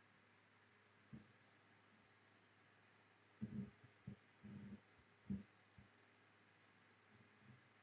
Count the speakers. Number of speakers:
0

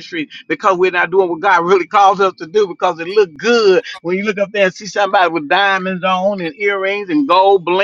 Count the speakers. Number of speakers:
1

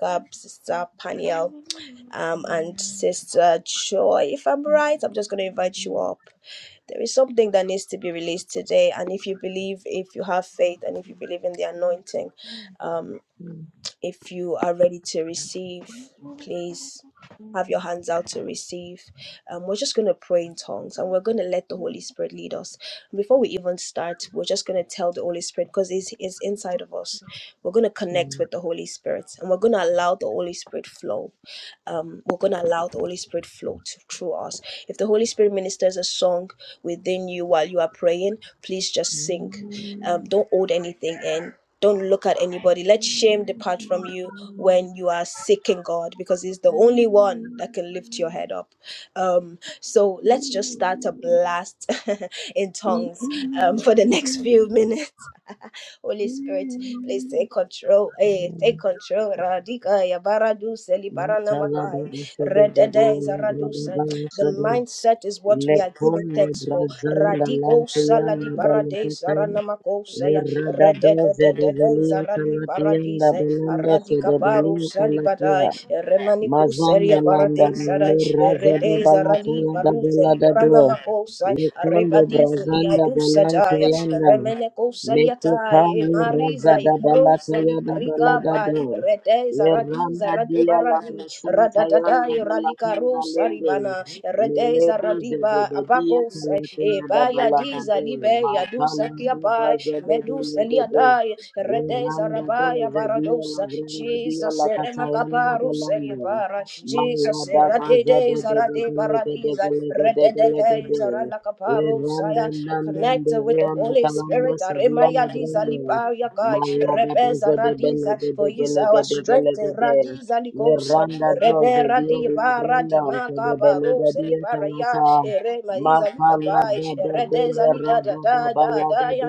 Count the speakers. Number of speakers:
2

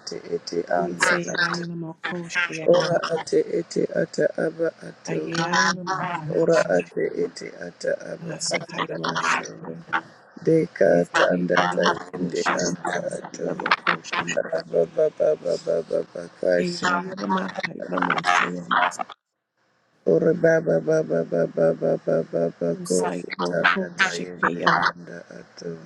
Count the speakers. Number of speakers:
2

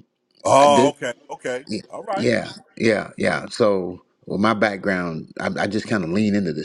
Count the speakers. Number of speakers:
2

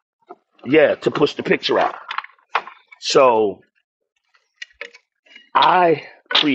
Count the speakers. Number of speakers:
1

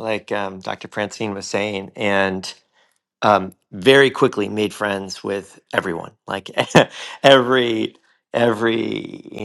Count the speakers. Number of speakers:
1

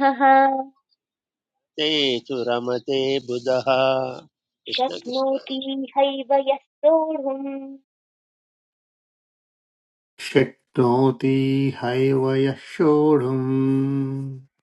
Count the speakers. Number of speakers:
3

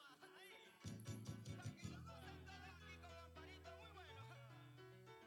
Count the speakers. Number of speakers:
0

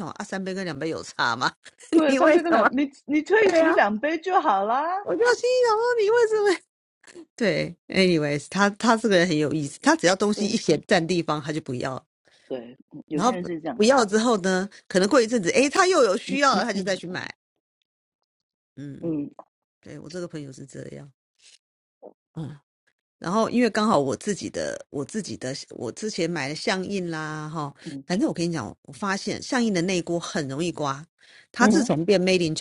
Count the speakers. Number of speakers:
2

